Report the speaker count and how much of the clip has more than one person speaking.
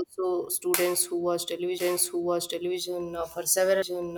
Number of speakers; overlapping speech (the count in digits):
1, no overlap